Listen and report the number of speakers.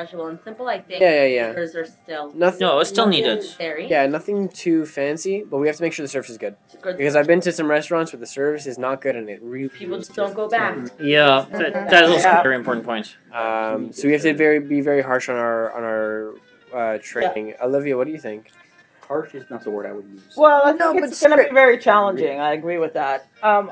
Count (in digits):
5